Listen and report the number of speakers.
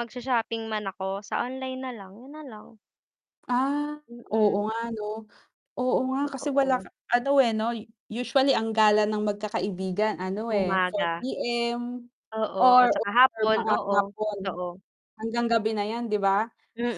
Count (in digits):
2